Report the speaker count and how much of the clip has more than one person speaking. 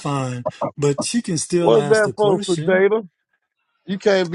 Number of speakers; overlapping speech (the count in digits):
2, about 27%